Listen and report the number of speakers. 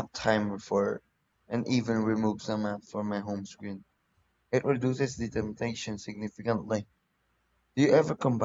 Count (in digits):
1